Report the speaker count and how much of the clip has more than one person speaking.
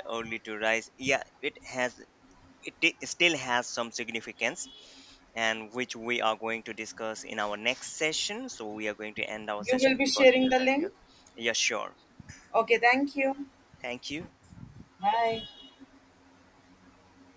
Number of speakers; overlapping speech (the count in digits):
2, about 7%